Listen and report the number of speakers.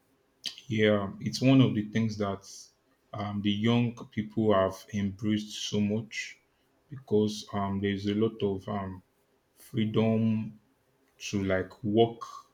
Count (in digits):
1